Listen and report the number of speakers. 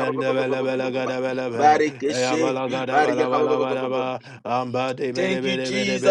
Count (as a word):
two